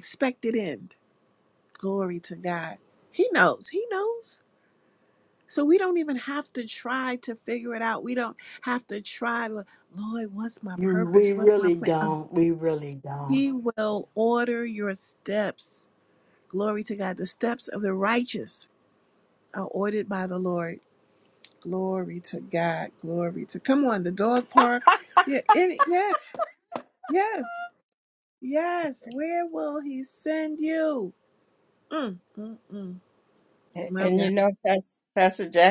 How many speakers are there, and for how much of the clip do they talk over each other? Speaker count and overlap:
three, about 5%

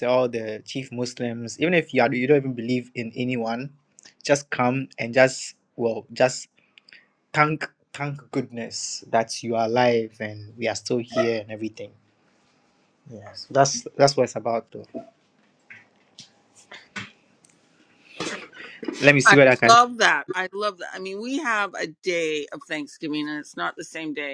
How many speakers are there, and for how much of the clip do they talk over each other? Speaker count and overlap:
two, about 2%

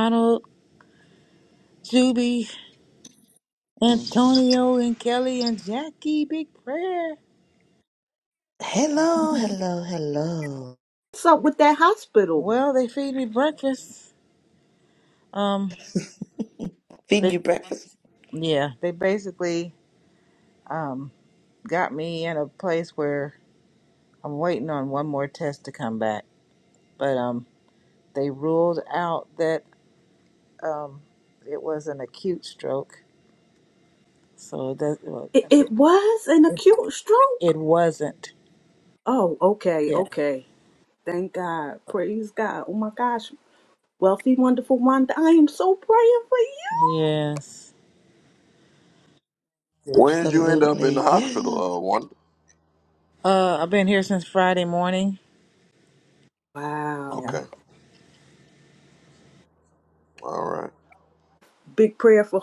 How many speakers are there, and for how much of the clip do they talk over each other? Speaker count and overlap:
four, about 4%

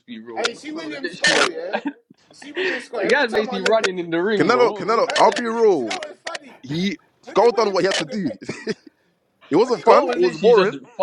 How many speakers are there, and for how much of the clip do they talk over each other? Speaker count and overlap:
three, about 57%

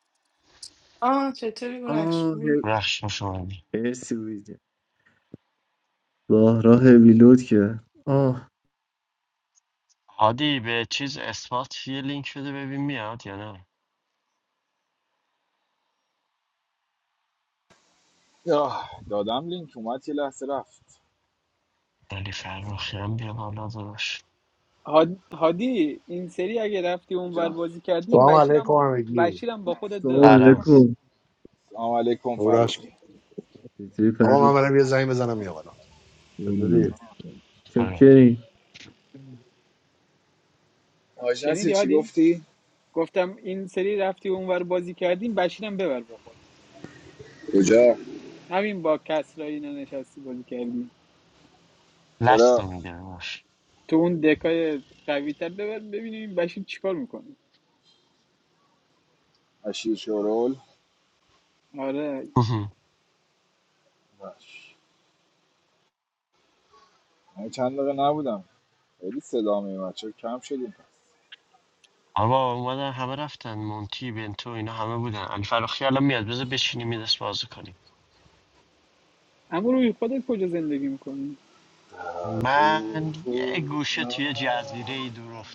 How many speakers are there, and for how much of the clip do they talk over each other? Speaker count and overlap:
six, about 7%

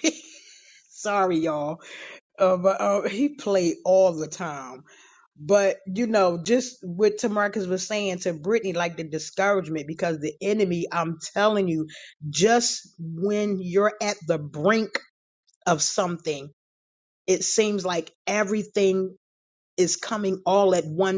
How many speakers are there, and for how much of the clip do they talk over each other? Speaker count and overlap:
one, no overlap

